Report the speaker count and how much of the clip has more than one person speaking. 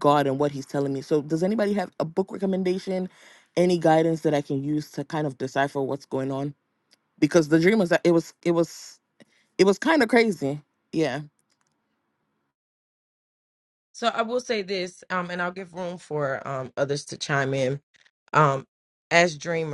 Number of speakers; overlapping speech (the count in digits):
2, no overlap